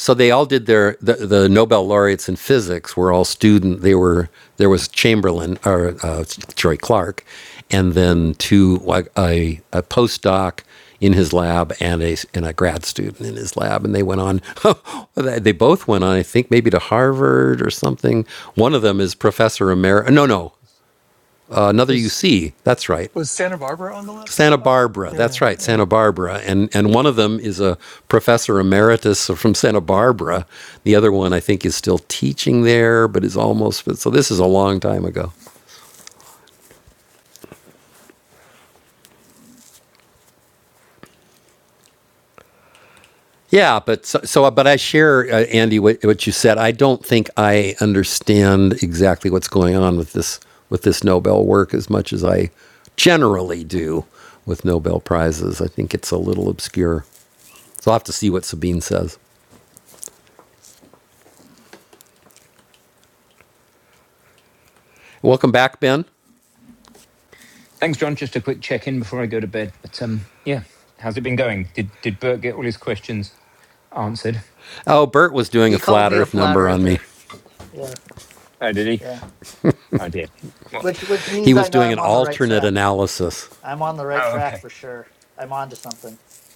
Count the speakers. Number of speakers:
4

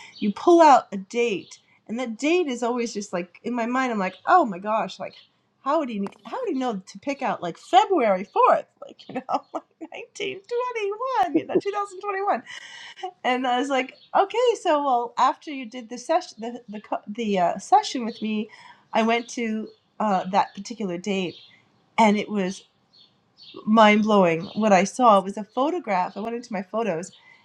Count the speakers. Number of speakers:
1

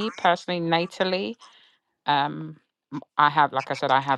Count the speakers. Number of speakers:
1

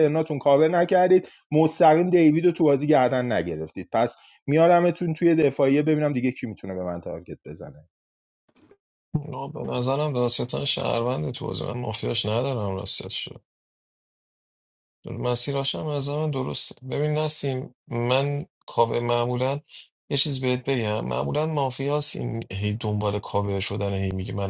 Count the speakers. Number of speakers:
2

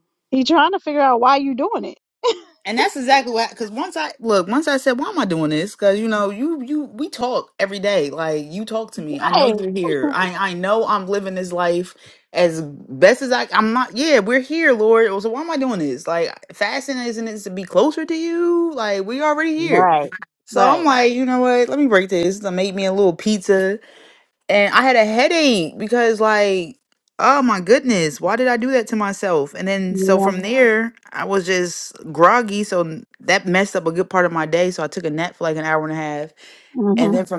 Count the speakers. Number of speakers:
2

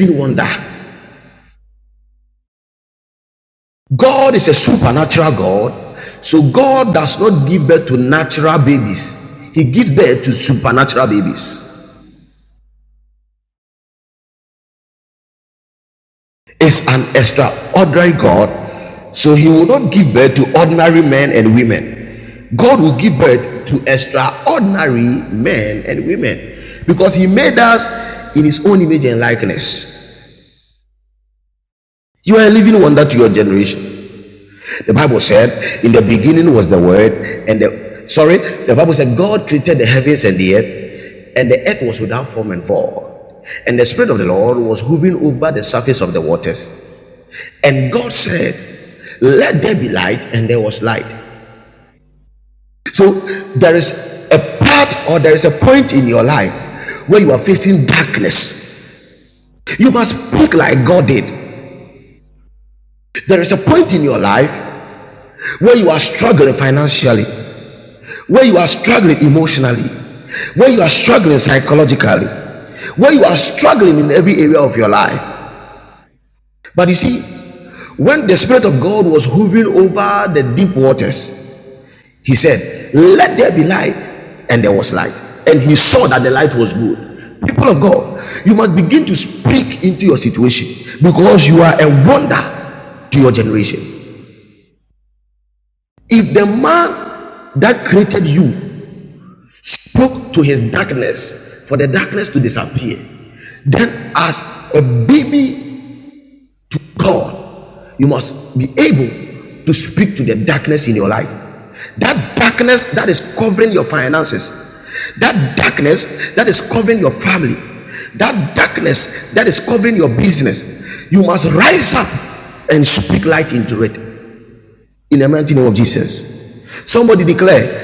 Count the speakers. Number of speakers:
1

